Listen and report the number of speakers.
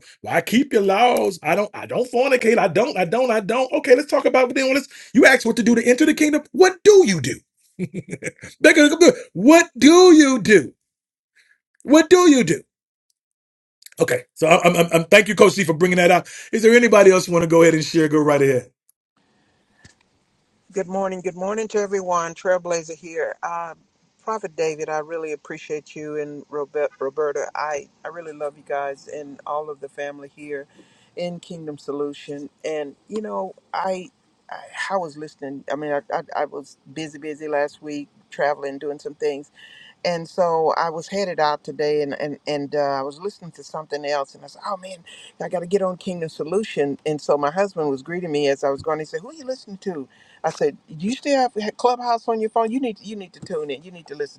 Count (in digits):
2